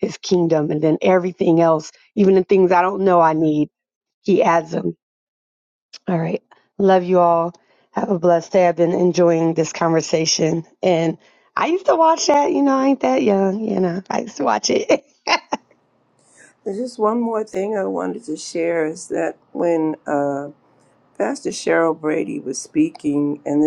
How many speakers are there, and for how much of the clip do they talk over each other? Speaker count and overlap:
two, no overlap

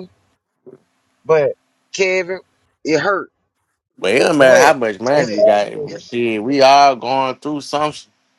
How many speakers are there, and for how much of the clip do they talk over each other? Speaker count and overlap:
two, about 9%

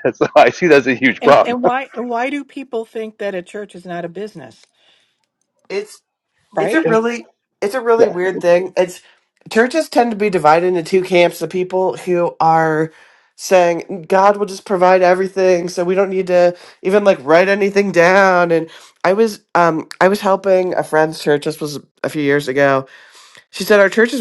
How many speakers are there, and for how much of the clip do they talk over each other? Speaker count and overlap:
three, about 3%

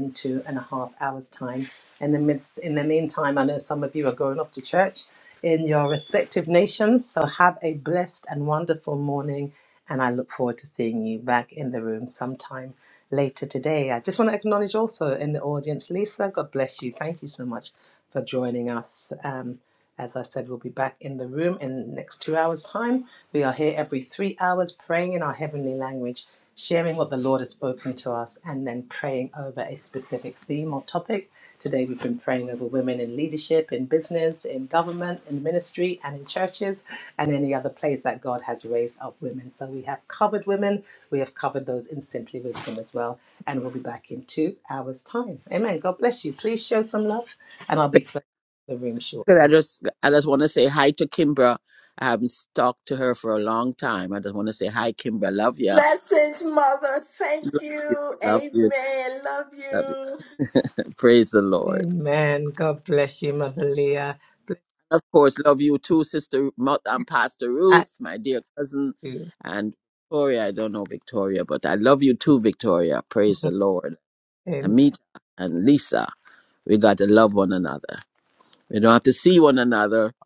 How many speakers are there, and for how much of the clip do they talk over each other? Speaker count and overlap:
three, about 2%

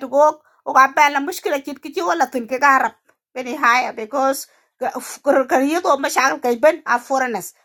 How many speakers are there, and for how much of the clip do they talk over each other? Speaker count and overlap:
one, no overlap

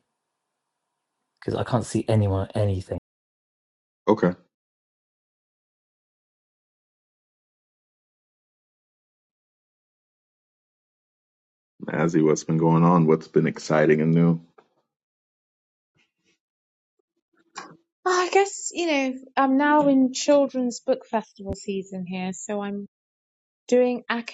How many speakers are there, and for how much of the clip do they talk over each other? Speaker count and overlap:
three, no overlap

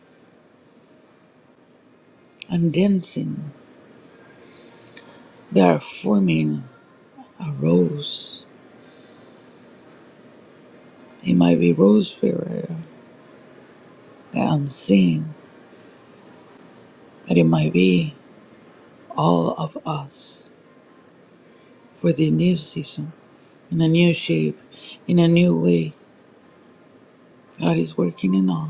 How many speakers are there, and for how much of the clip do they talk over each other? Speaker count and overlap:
one, no overlap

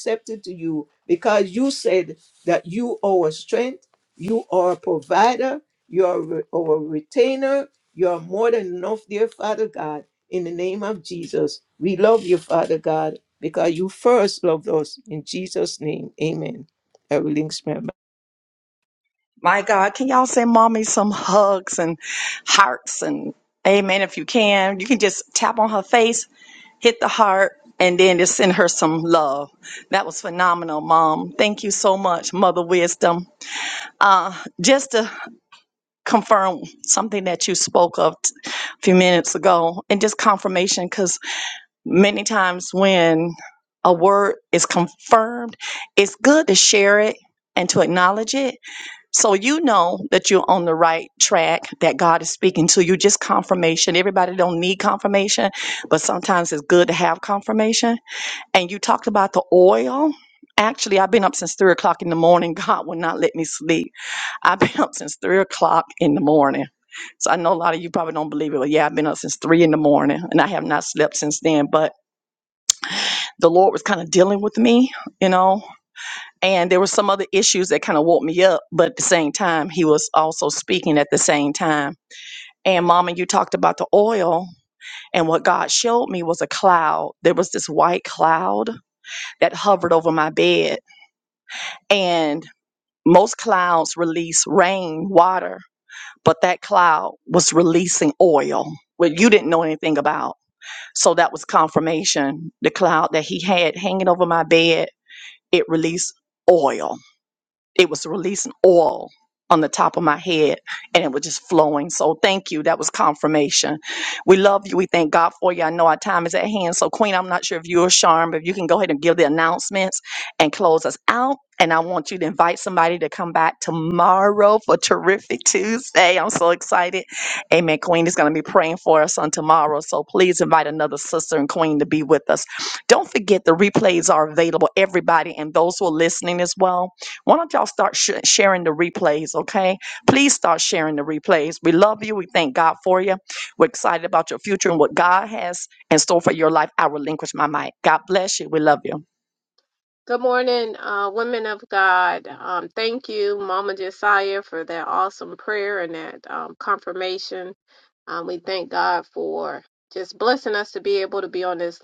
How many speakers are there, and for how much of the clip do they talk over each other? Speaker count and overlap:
three, no overlap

